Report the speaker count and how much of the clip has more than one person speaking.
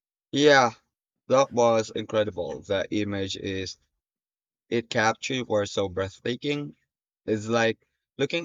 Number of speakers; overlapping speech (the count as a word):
one, no overlap